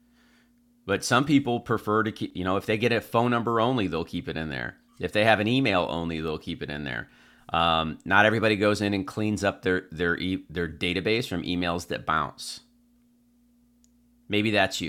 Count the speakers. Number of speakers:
1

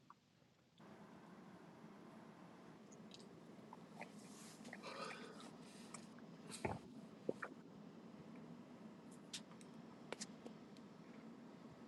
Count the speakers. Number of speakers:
0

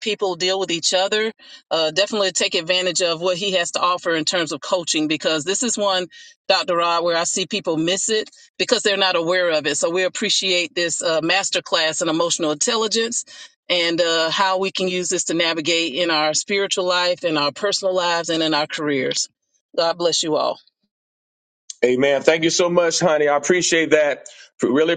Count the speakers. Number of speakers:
2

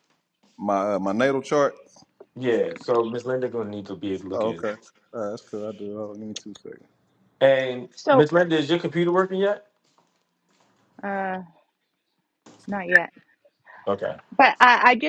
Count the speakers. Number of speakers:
3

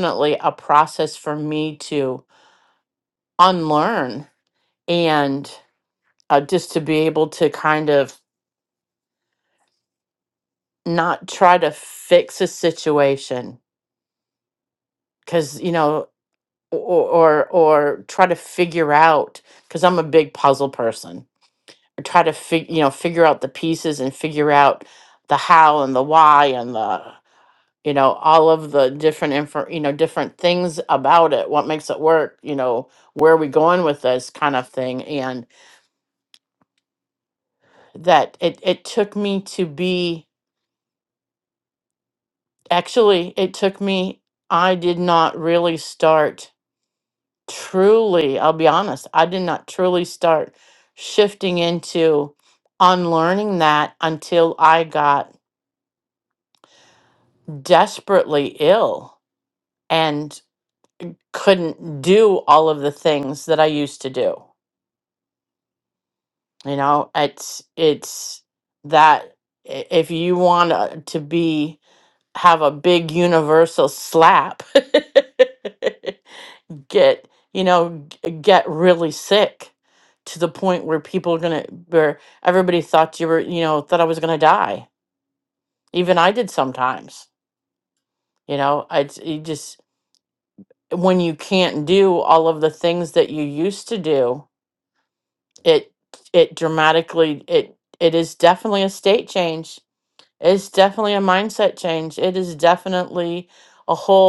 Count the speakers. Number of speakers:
1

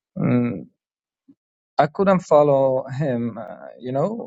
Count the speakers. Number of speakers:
1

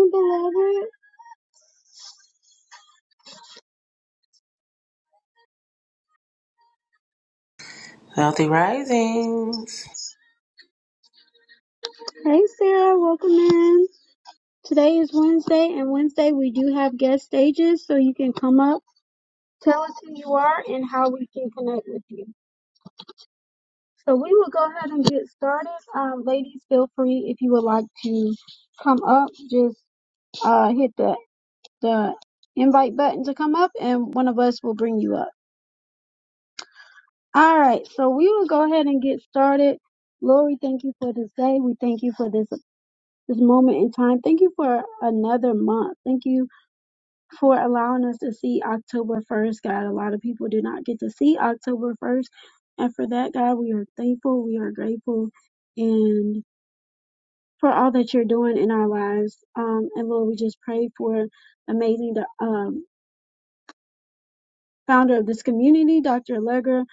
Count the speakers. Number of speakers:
2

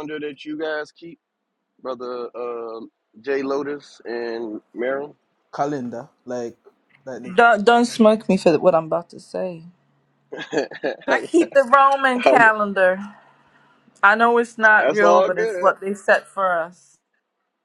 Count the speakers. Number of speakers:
3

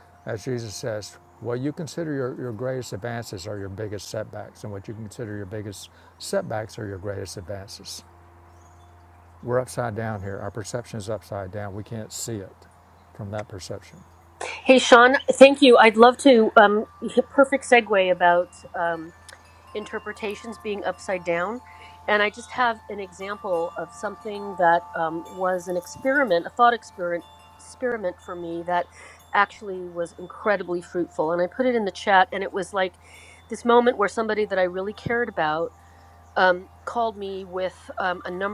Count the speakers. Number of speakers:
2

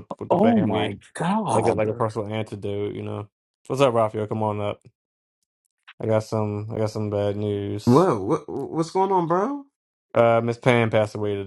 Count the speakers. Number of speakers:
3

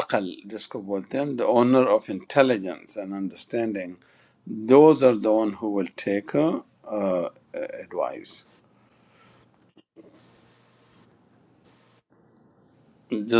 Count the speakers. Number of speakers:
1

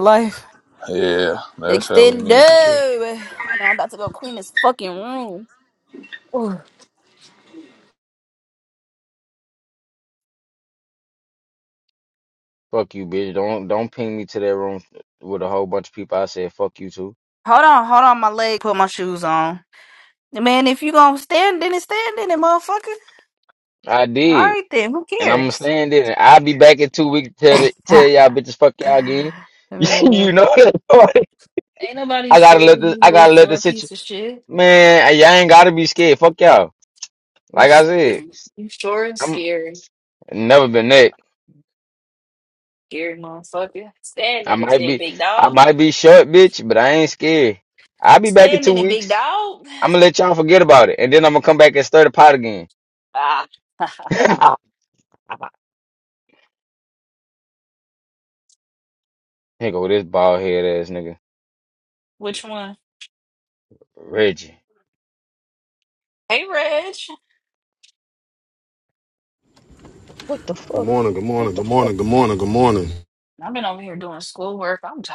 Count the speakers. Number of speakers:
4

